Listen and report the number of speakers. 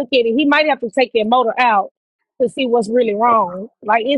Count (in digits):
1